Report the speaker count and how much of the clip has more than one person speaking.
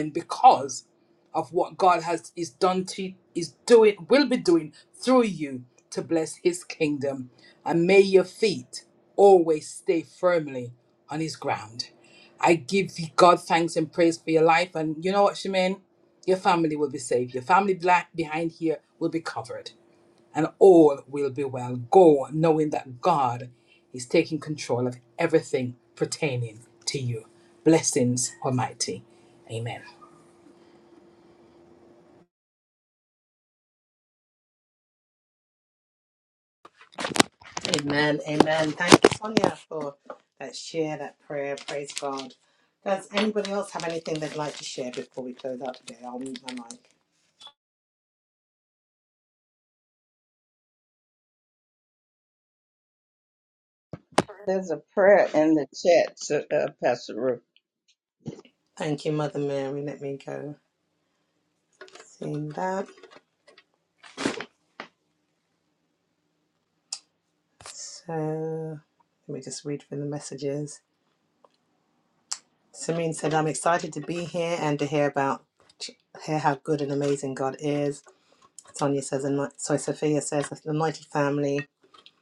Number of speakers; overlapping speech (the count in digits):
3, no overlap